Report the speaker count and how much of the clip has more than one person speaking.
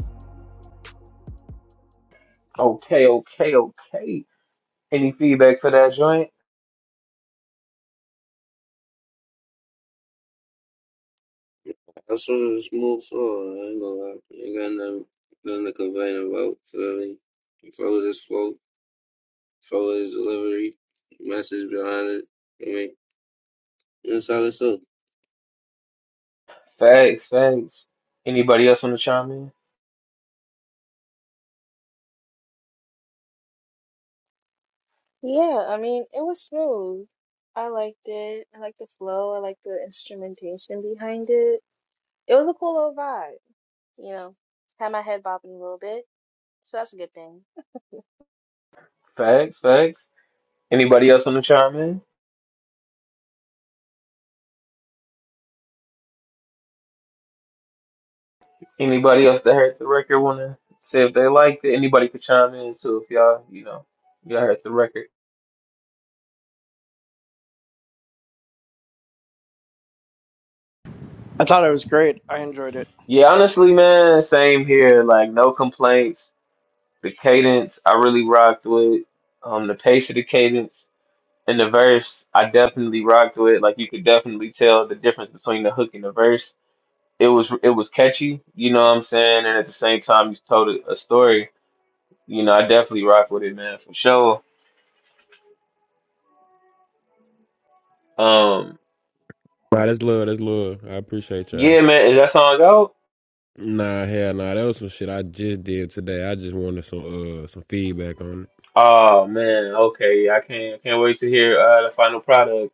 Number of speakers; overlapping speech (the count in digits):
5, under 1%